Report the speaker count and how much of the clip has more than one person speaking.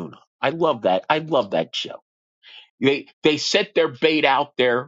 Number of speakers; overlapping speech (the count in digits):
1, no overlap